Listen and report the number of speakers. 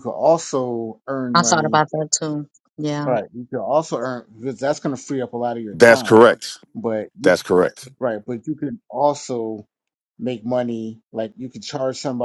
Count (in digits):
3